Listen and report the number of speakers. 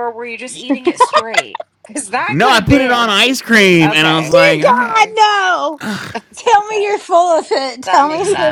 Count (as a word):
three